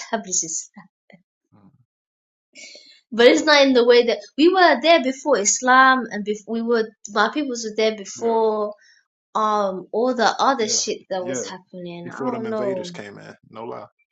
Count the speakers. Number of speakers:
2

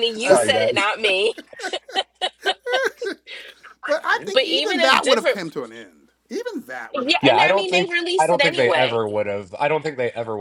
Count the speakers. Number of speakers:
3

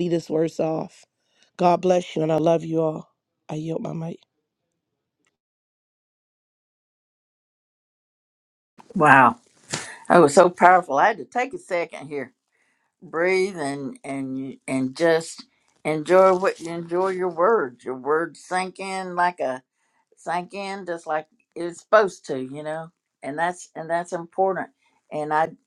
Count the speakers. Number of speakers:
2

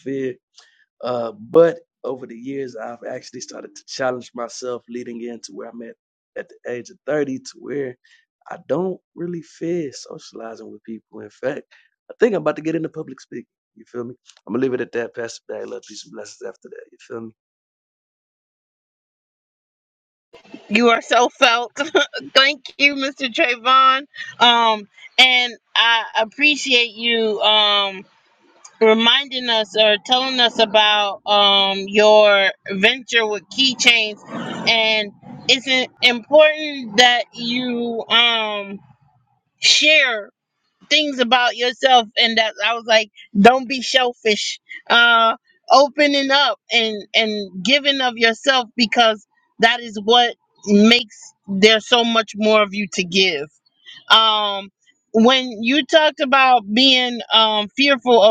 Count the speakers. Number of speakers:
2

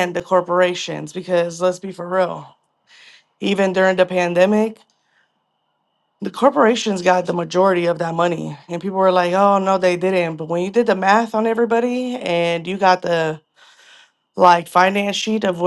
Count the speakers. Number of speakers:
1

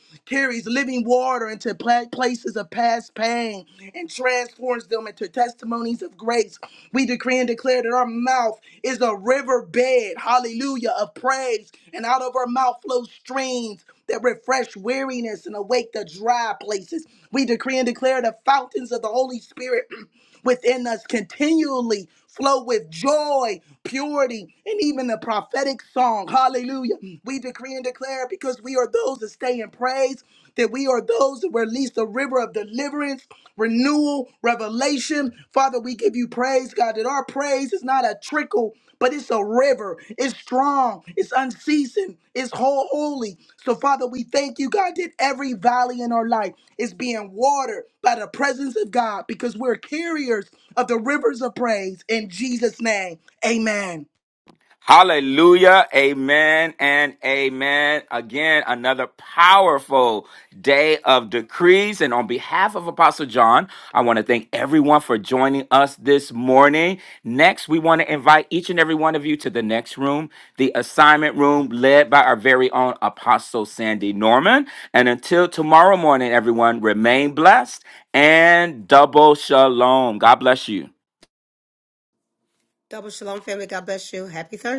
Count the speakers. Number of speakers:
3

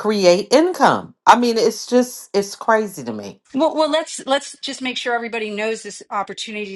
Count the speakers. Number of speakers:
2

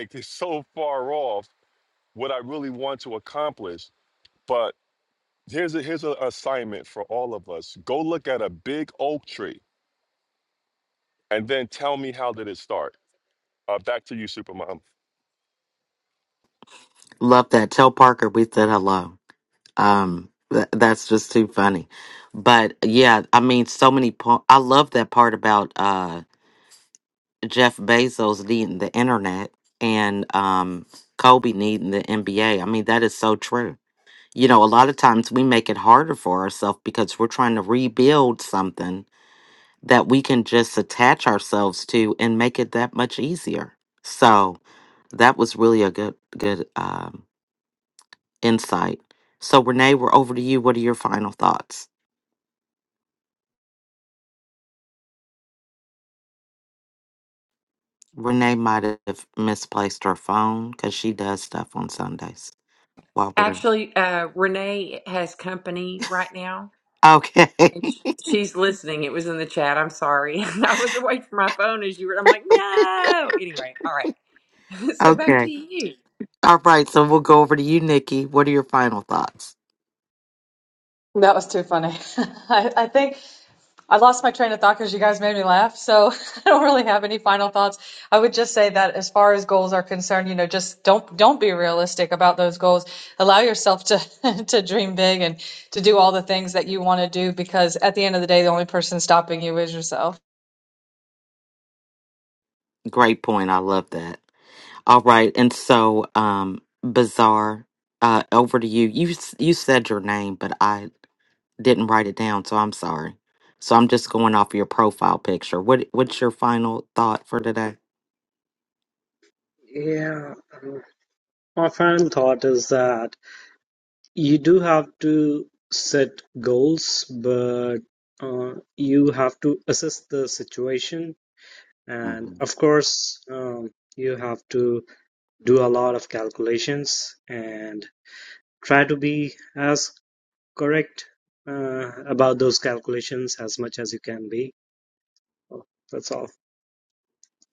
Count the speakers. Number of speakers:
5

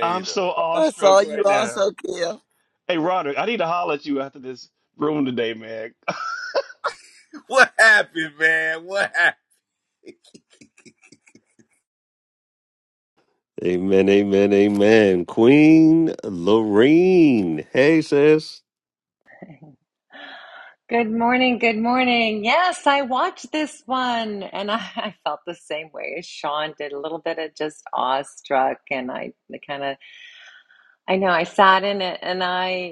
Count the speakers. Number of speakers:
5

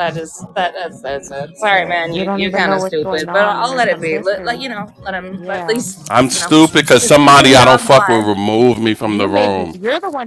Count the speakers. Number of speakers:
3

